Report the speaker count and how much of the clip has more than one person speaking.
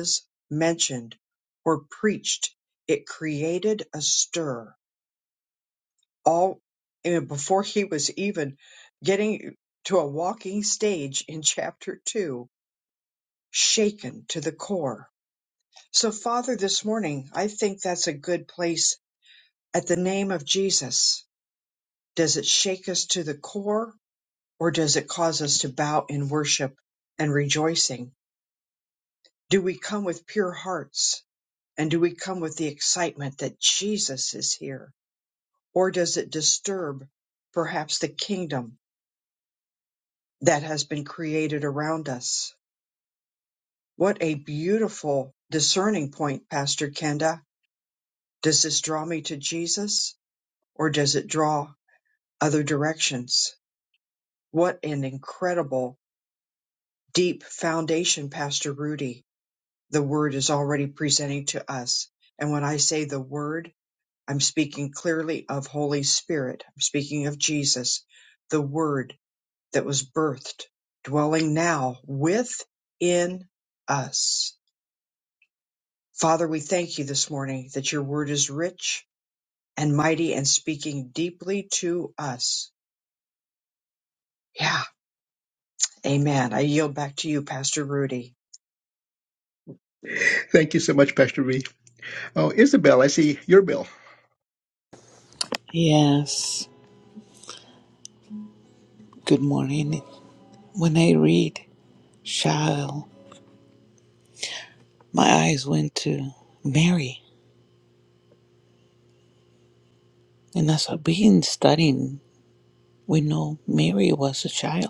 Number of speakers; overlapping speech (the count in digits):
3, no overlap